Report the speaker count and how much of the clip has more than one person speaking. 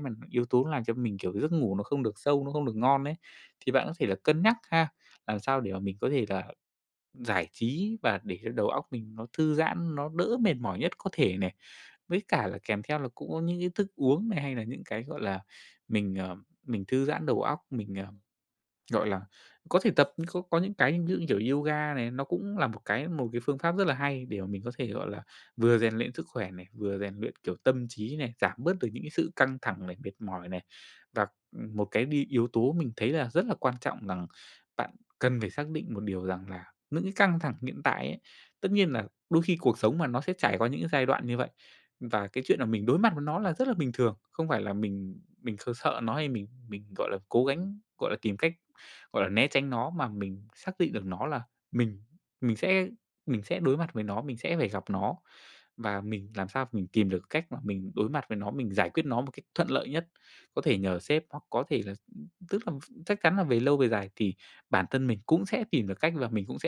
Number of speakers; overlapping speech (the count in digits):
1, no overlap